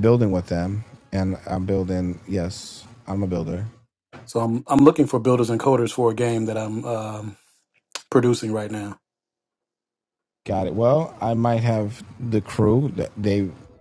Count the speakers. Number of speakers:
two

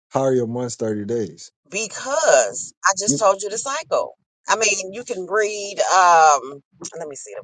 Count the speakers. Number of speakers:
two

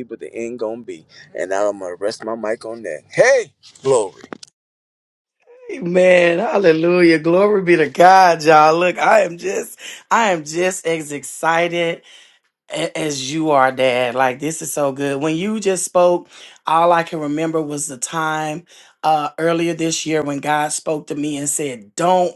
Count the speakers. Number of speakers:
two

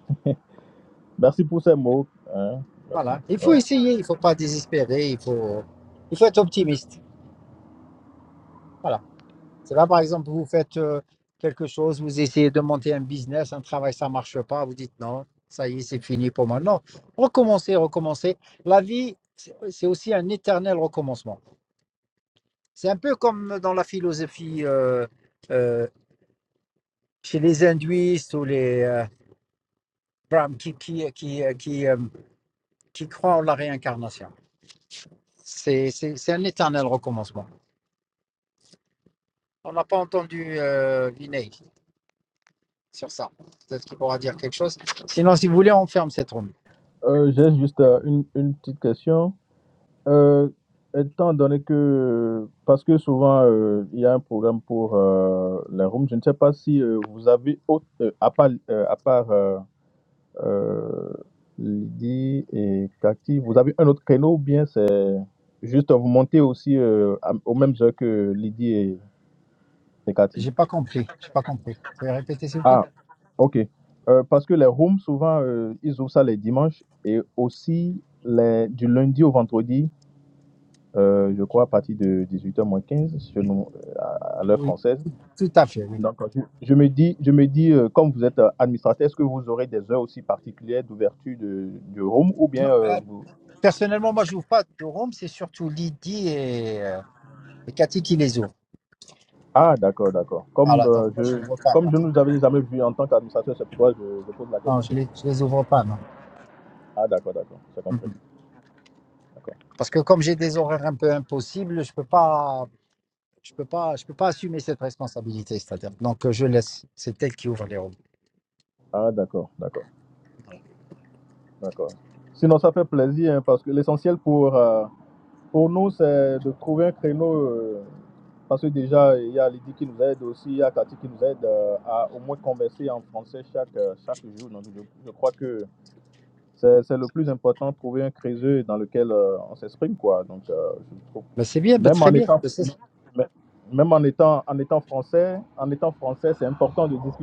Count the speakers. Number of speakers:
two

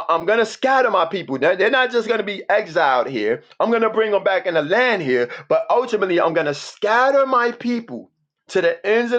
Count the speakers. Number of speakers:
one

